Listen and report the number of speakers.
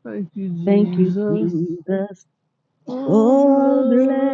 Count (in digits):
2